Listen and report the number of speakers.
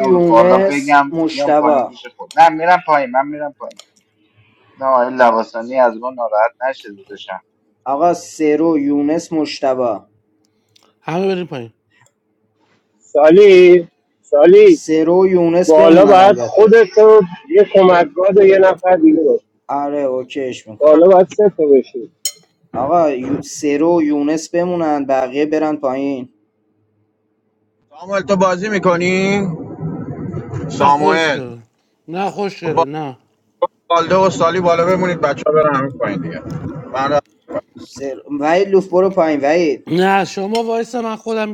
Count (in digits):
5